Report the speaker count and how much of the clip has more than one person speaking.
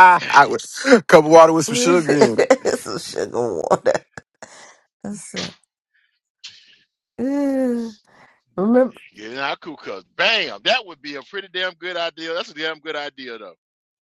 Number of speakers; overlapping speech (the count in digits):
3, about 5%